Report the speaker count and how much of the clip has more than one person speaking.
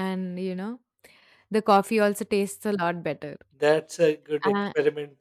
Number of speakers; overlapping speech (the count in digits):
2, about 6%